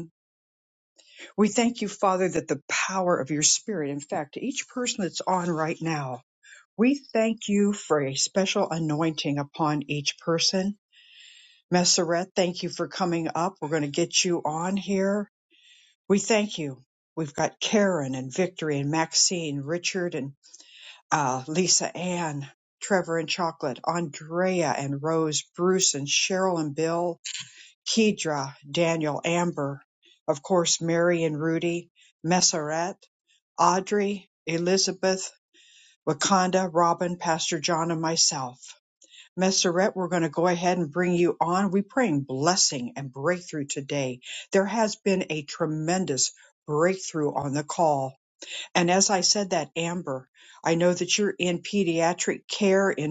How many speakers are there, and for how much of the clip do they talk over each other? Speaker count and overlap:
1, no overlap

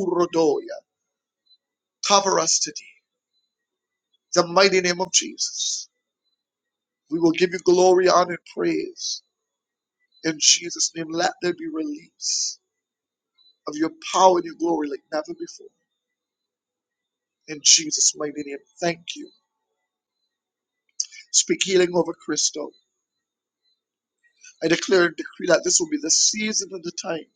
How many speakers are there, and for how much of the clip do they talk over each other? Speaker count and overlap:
1, no overlap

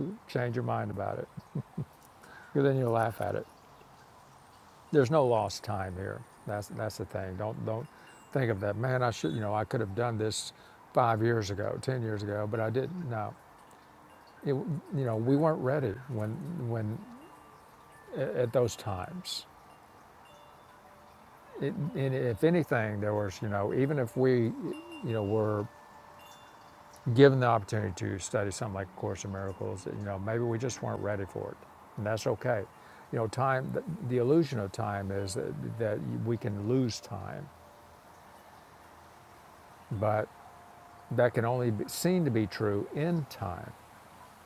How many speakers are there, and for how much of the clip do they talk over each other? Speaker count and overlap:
1, no overlap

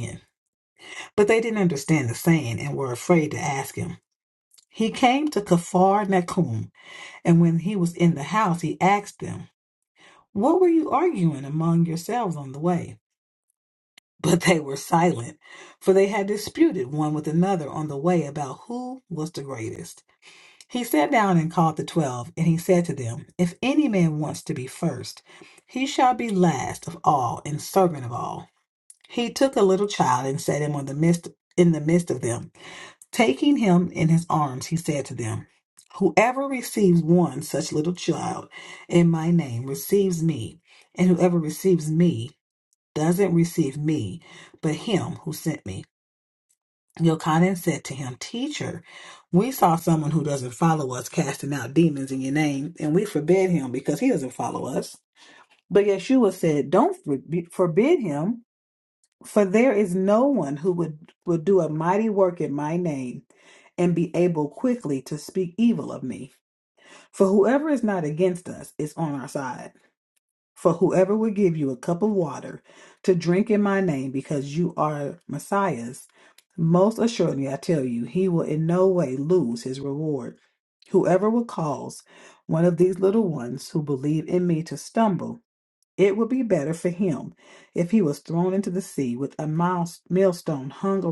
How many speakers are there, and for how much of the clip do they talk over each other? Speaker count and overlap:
1, no overlap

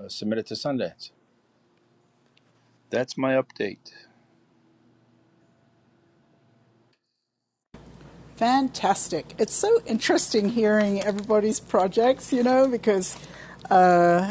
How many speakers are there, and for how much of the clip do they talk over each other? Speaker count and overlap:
2, no overlap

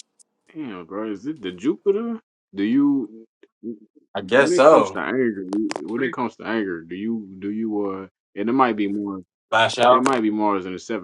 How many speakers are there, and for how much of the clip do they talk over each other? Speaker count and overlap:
2, about 7%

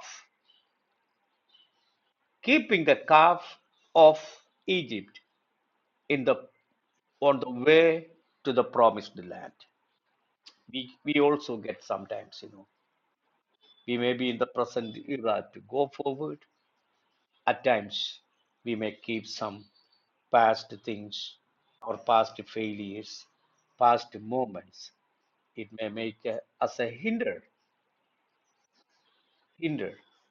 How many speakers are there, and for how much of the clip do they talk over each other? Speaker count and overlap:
1, no overlap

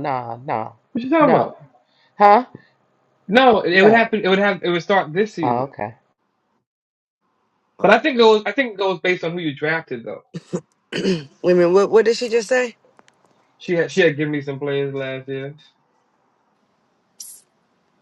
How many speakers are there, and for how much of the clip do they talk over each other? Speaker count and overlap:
3, about 5%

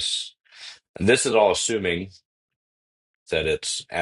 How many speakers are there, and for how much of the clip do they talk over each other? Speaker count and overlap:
1, no overlap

